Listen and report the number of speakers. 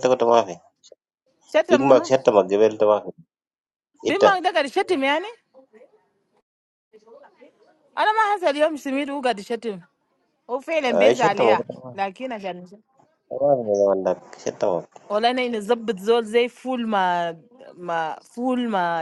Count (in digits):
2